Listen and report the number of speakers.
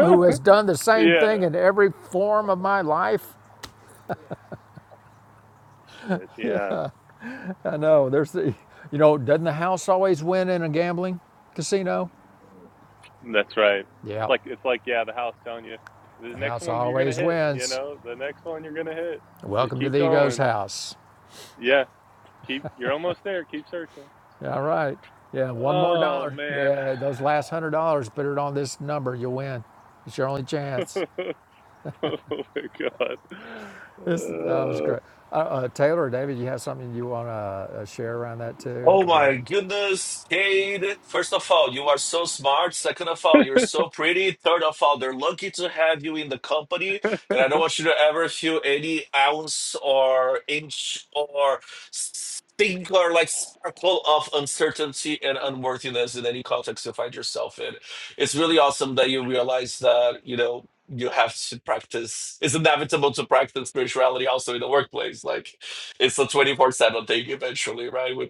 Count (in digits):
3